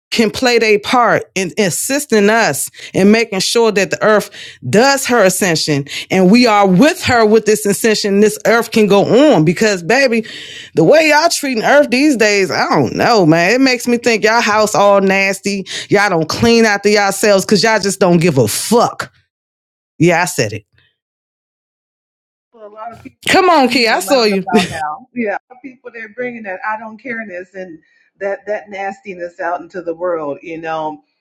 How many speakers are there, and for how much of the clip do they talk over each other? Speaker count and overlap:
2, about 3%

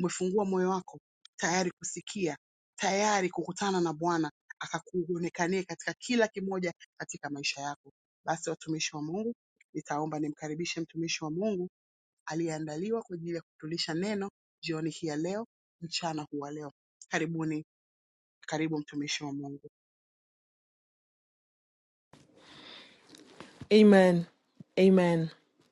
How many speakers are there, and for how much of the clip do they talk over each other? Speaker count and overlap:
2, no overlap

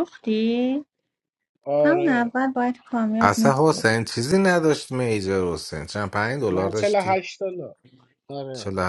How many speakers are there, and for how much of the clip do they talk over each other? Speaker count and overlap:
3, about 16%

